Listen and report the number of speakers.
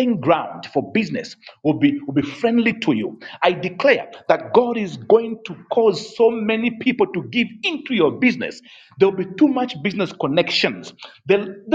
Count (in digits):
1